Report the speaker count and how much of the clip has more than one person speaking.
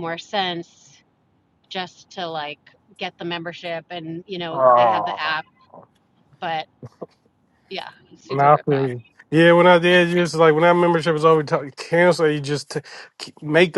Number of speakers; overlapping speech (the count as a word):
two, about 9%